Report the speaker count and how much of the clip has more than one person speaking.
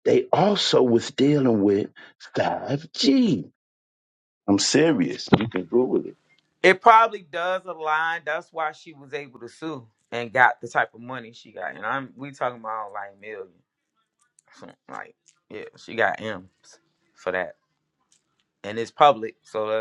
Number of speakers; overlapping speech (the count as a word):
two, no overlap